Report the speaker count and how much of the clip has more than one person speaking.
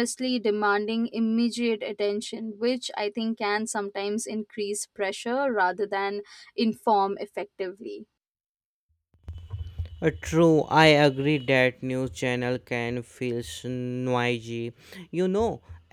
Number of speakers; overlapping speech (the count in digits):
2, no overlap